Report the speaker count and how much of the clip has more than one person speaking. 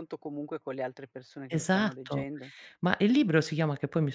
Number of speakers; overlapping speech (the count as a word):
two, about 18%